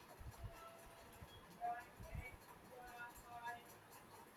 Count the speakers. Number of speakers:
0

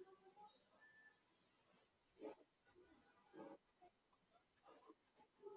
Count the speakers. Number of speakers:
0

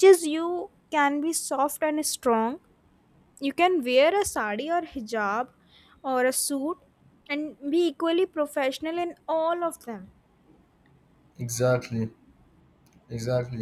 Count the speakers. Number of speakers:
2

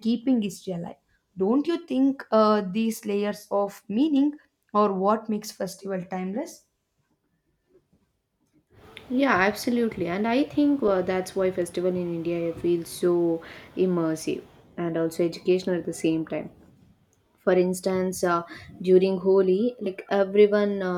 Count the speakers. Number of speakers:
2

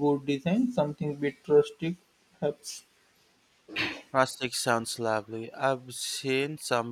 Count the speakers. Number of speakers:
2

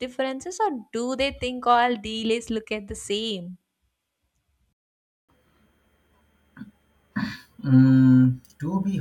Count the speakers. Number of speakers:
2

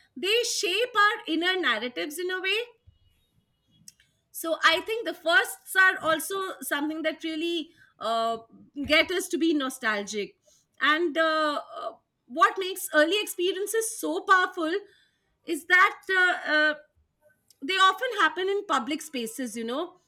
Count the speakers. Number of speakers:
1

